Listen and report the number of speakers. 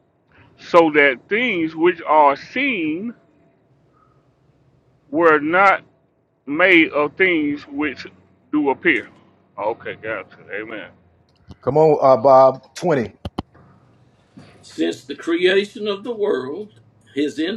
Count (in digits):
3